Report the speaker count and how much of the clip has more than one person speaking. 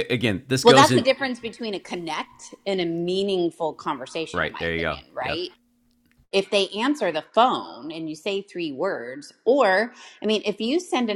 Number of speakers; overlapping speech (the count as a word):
two, about 13%